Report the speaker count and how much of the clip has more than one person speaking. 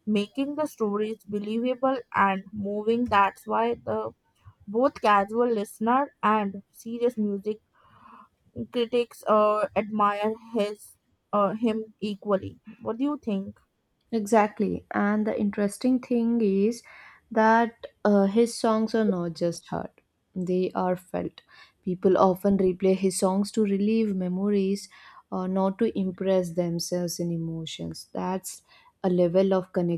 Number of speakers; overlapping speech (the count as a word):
two, no overlap